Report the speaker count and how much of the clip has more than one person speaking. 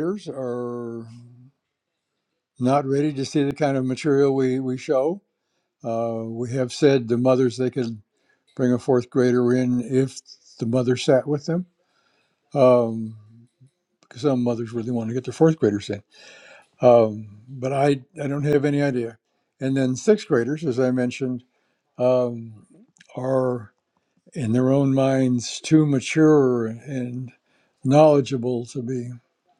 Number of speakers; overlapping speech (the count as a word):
one, no overlap